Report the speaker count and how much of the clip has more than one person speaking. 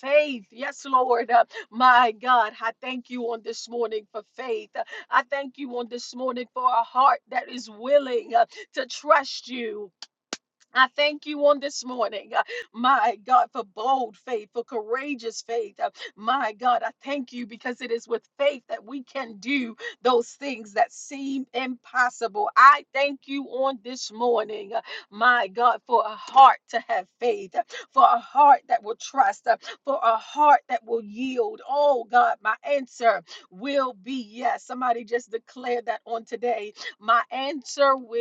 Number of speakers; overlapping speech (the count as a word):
one, no overlap